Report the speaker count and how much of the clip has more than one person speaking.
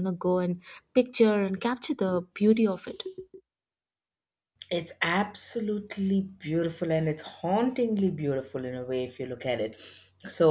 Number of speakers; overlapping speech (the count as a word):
two, no overlap